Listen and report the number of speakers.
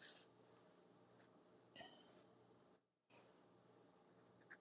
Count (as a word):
zero